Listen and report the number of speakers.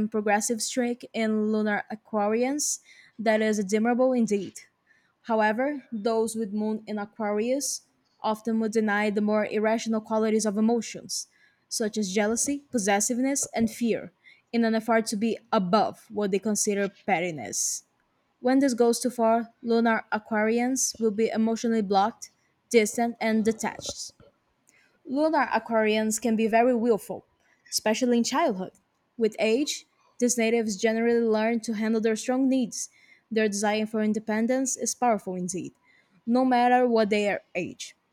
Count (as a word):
one